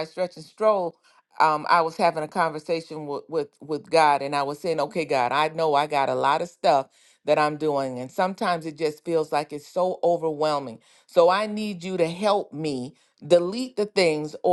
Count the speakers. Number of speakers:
1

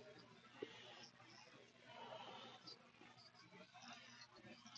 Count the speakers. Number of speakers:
0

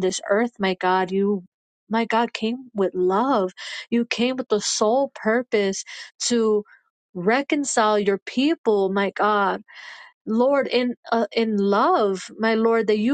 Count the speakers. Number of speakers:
1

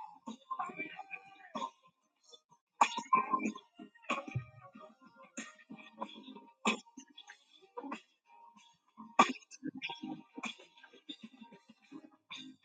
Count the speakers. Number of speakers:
0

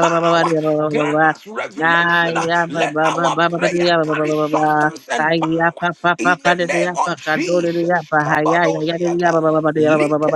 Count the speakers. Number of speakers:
2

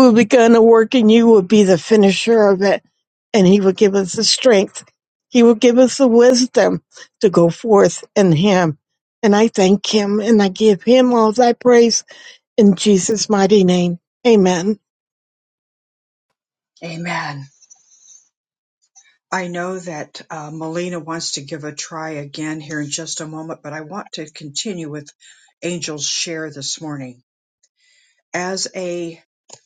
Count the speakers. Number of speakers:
2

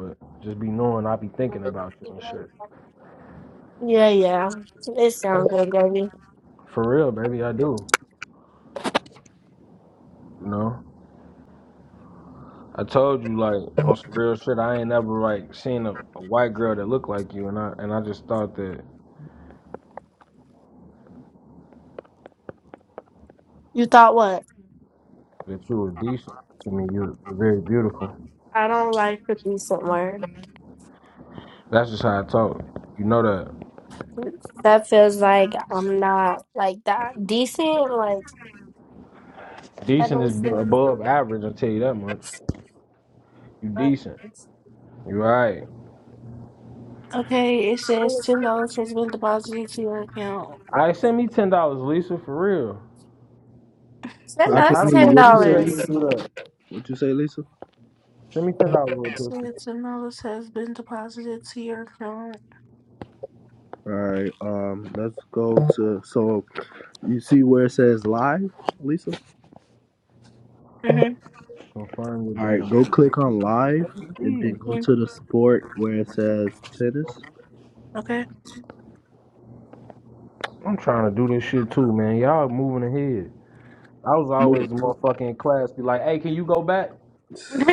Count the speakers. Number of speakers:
4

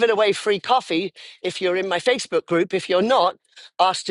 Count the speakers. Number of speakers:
1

